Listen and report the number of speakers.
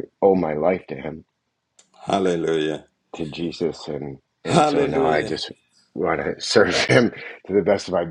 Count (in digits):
2